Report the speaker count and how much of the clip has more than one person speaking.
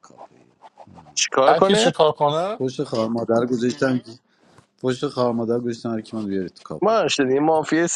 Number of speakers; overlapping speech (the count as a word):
three, about 8%